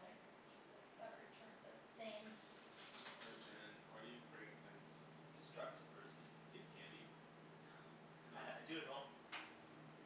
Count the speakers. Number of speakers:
three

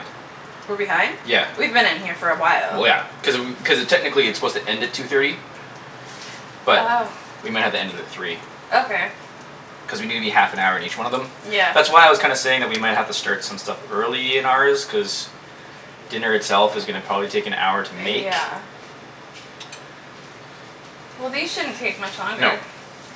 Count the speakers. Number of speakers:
two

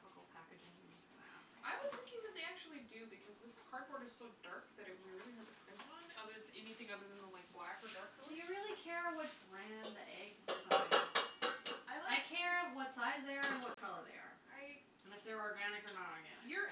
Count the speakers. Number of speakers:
two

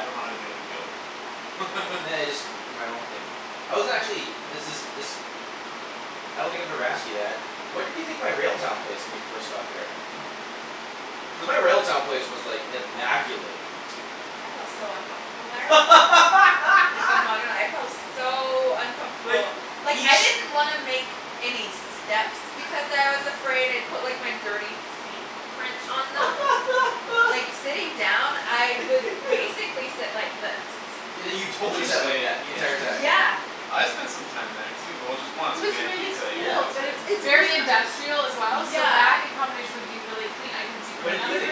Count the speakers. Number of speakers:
four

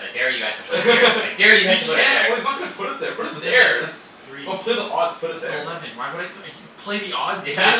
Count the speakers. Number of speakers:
three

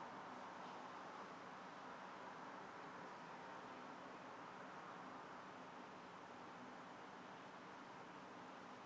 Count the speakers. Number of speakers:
zero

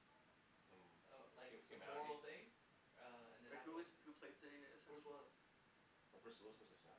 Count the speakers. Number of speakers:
three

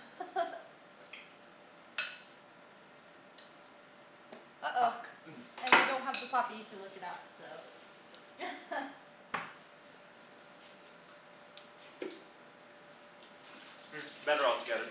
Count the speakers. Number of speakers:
two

